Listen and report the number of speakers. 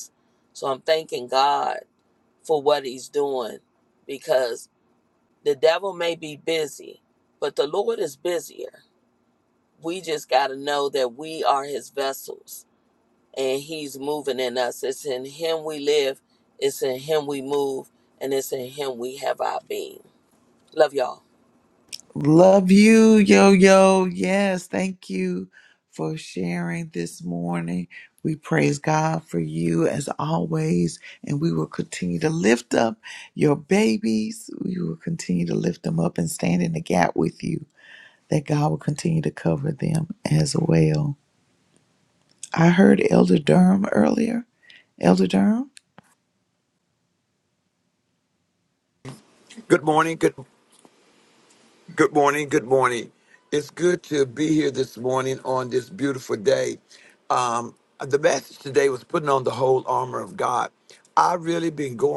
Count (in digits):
3